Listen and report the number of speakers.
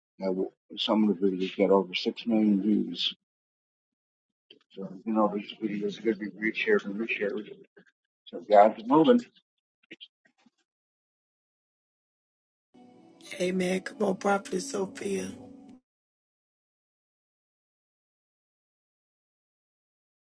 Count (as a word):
two